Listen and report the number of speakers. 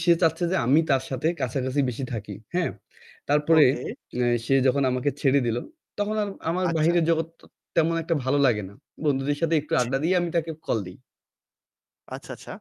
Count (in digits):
2